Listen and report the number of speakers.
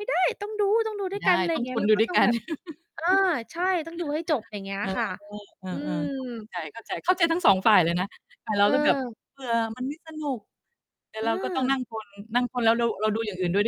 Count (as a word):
two